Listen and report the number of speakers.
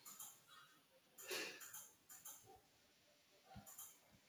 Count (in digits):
0